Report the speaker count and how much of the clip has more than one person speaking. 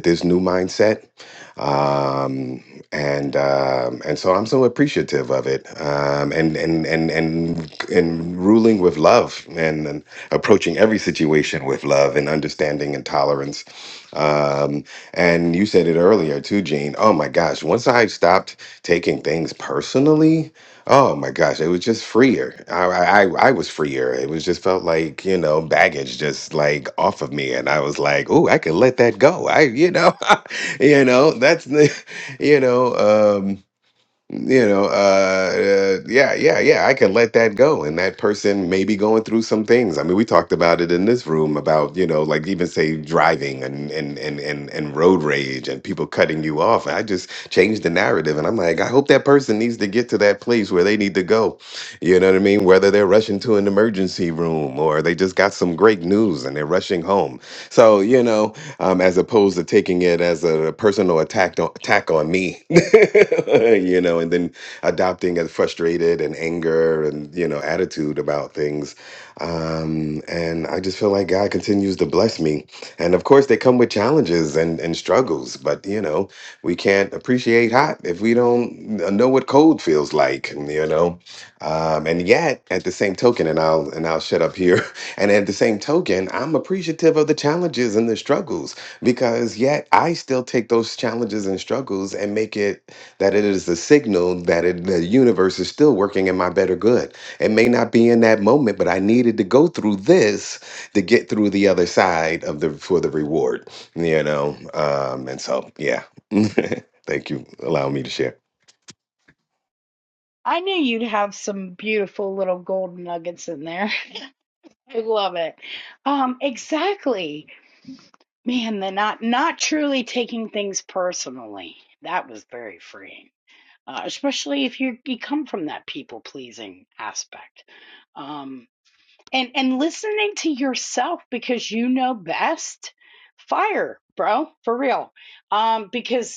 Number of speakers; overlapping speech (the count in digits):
2, no overlap